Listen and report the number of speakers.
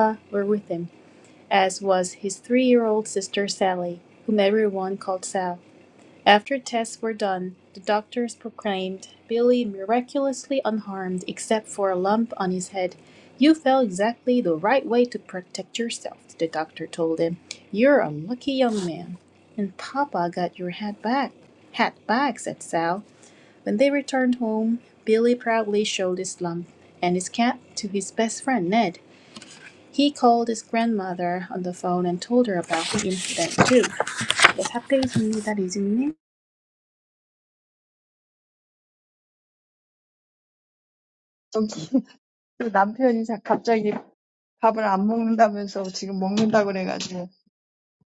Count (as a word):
two